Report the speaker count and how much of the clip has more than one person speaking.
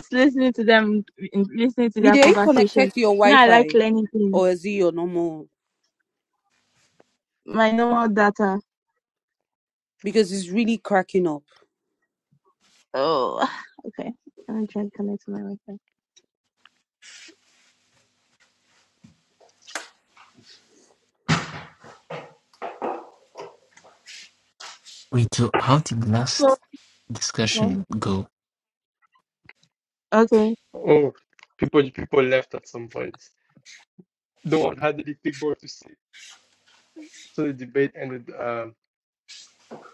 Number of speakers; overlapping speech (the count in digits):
4, about 5%